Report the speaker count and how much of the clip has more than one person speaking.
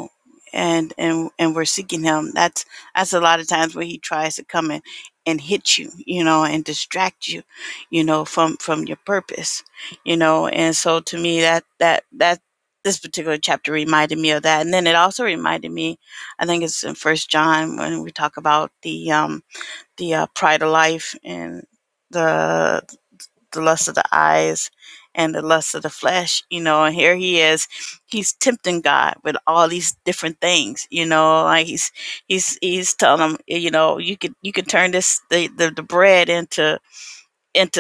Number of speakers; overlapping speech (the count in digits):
1, no overlap